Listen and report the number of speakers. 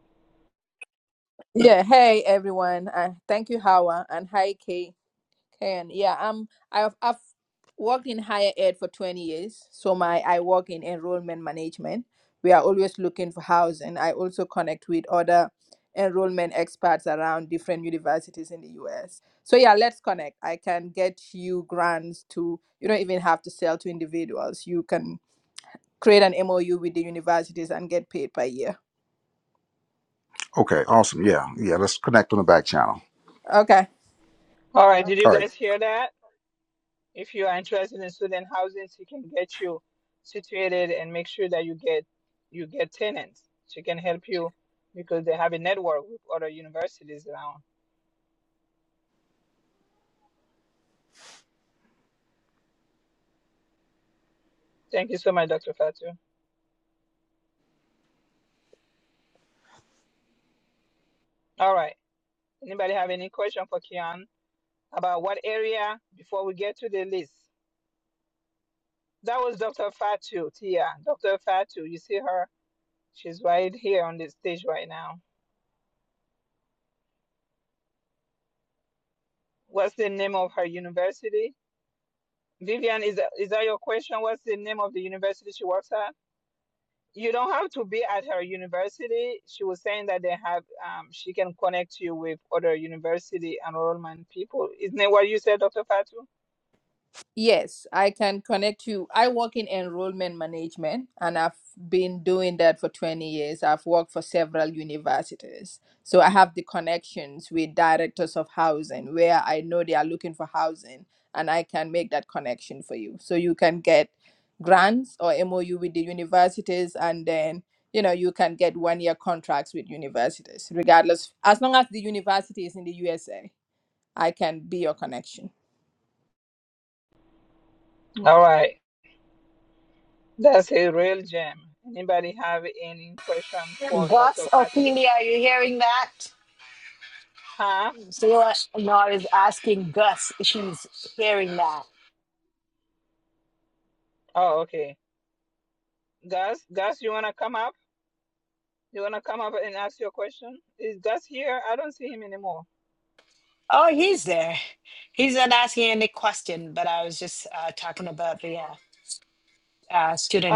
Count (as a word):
four